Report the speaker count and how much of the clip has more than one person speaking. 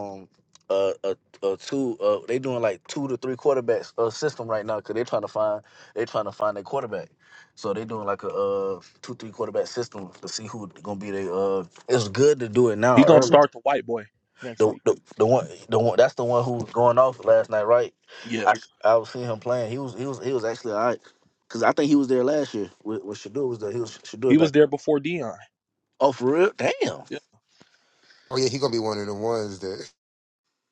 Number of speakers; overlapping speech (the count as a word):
three, about 3%